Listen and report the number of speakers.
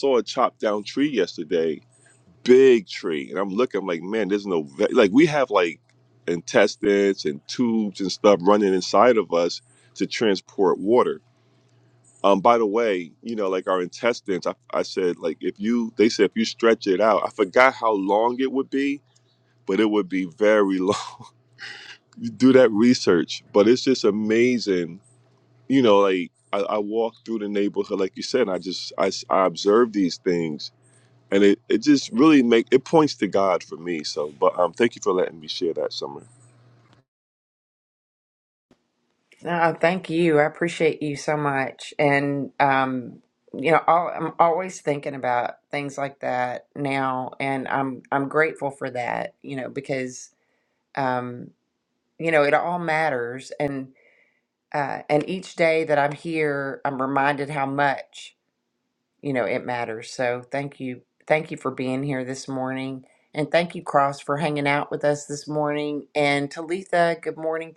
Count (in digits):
2